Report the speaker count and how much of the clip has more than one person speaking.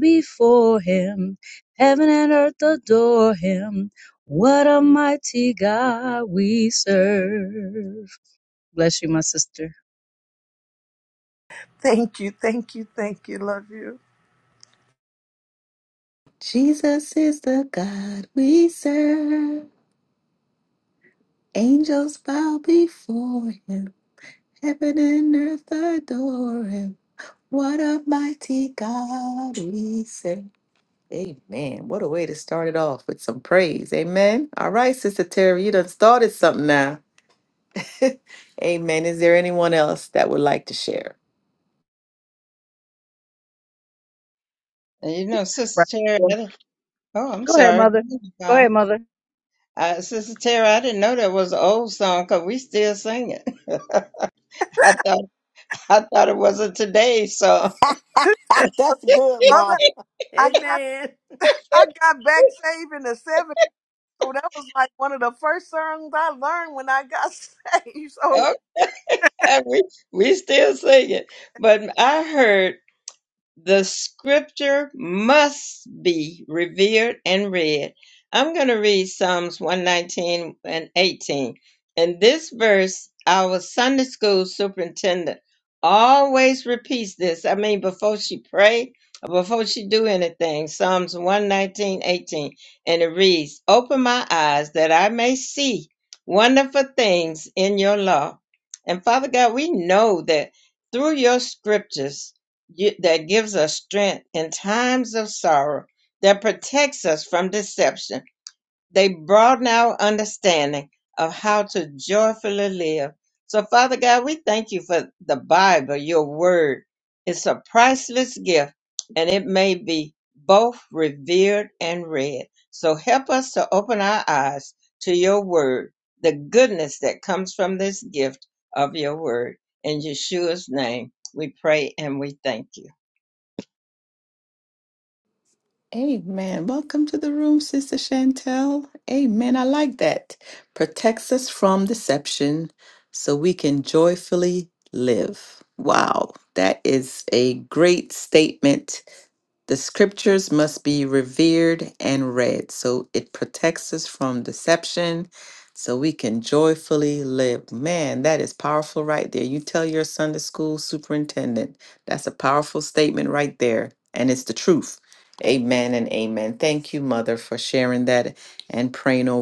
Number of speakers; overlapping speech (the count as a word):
five, about 1%